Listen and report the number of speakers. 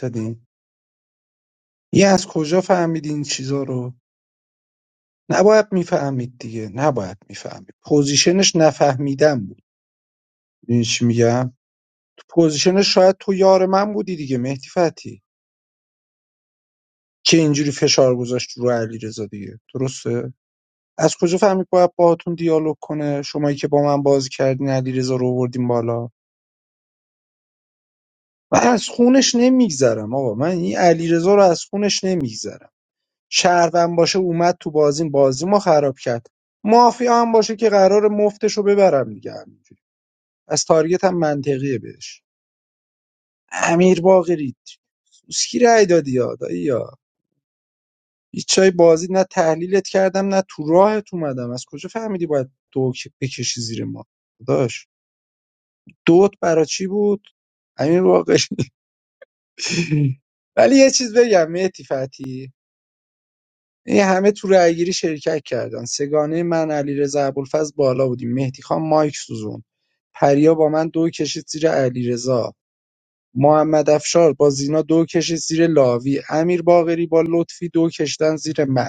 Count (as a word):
one